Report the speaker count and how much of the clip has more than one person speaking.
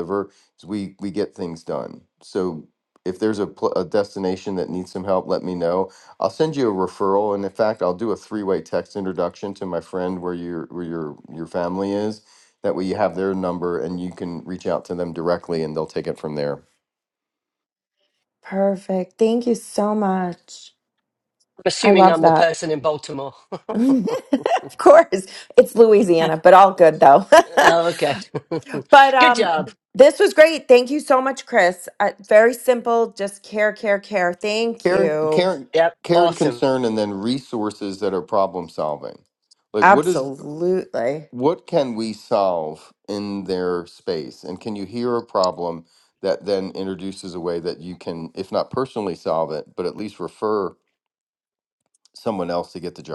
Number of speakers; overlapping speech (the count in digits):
3, about 5%